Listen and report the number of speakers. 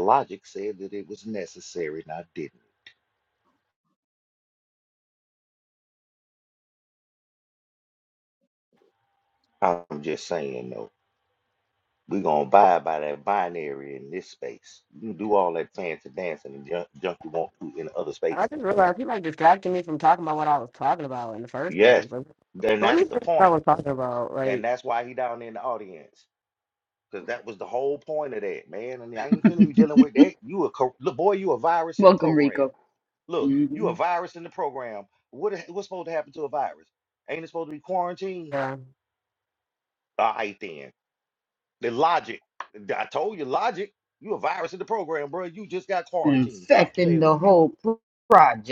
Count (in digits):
3